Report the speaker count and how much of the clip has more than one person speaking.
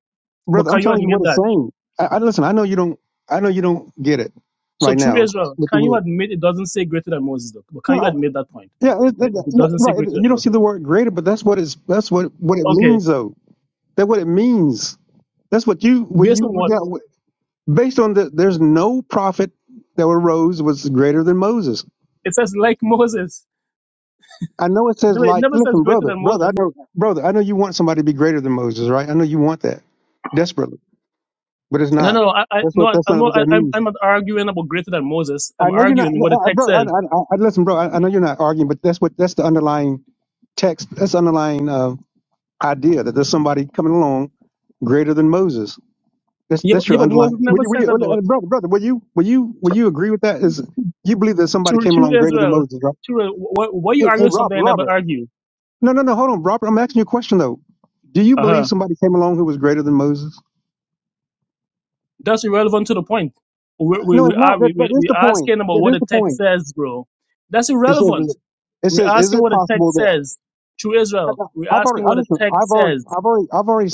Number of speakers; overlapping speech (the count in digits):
2, about 24%